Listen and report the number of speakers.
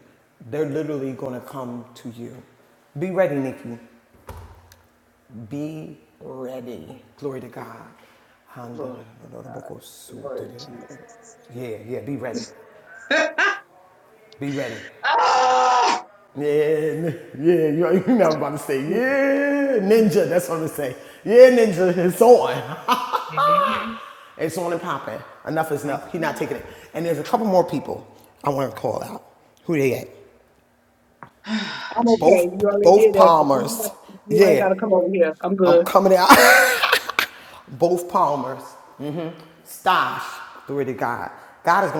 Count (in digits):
3